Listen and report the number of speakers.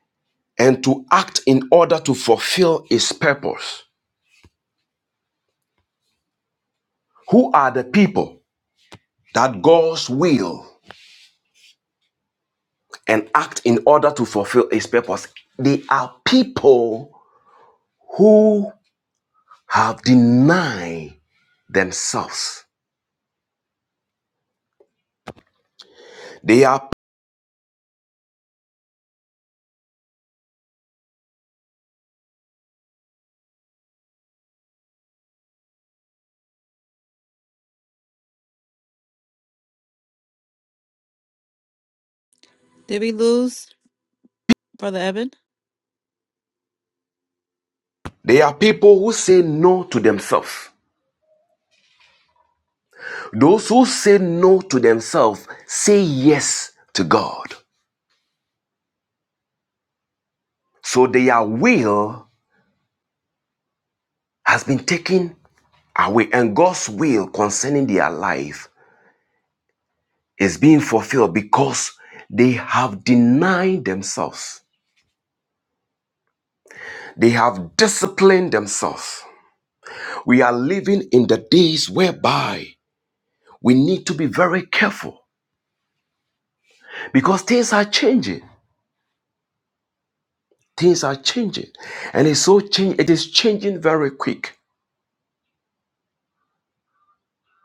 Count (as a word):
two